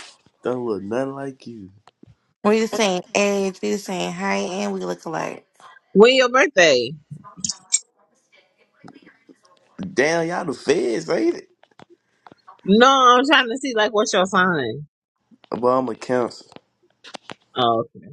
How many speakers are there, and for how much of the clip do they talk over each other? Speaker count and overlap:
3, no overlap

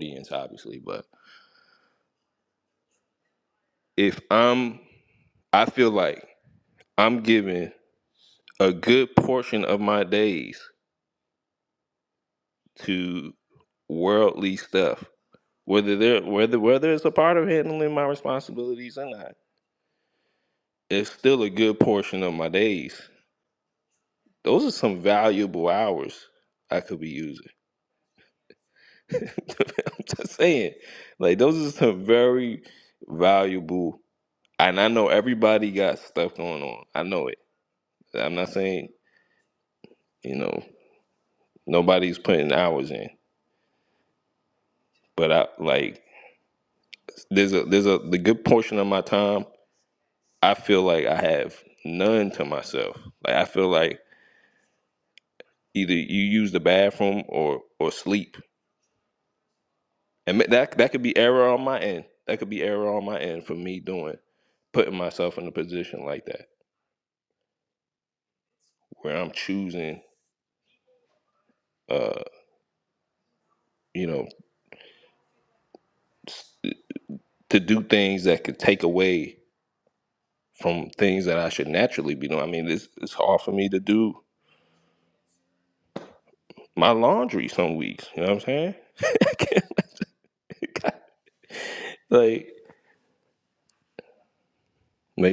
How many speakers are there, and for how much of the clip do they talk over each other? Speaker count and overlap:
1, no overlap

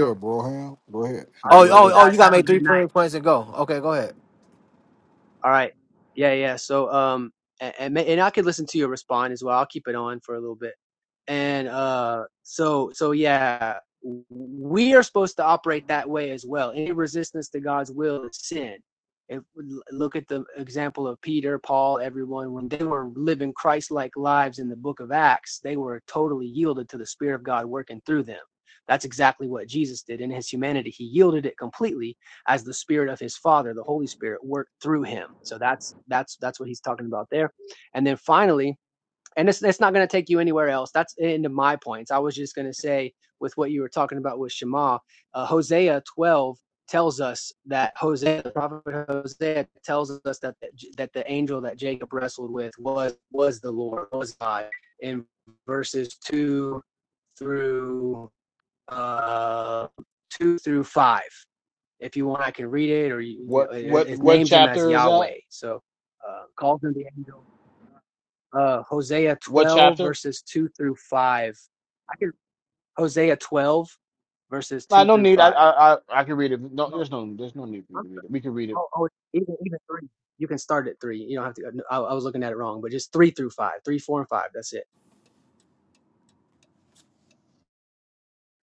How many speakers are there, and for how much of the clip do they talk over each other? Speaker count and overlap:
4, about 5%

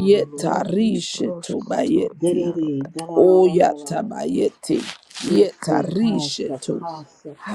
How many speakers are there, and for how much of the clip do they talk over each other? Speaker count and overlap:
3, about 59%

